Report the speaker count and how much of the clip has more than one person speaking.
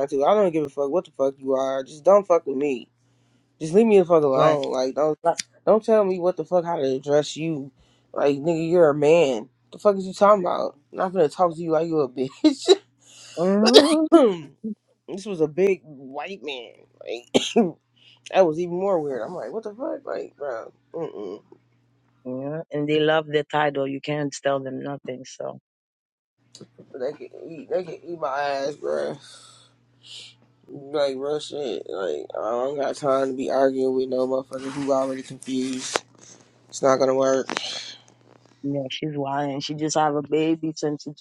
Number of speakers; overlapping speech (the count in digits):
2, about 1%